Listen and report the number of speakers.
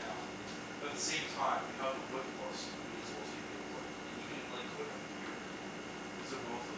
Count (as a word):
one